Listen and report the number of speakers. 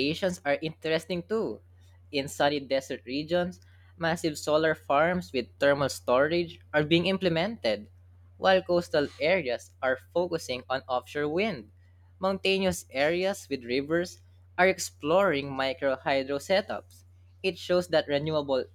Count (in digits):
1